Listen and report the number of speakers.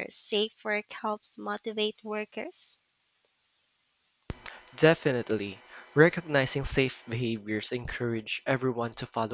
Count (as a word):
two